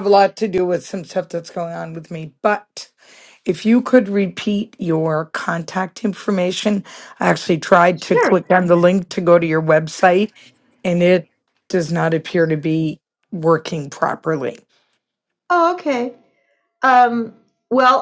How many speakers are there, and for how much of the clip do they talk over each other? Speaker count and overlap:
2, about 1%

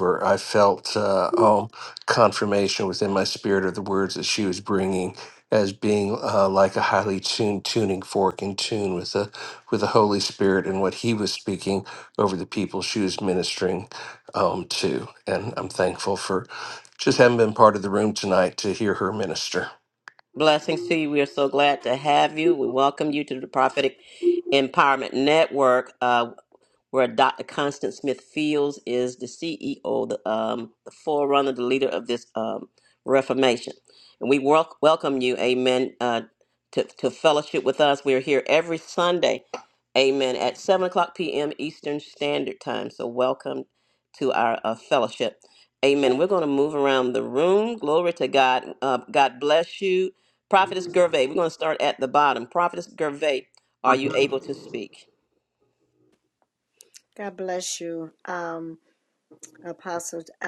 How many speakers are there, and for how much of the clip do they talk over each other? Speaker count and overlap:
3, no overlap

